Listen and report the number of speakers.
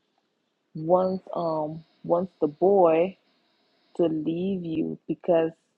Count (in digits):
1